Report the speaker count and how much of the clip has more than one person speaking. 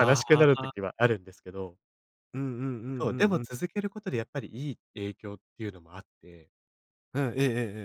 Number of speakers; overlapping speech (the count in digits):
2, about 16%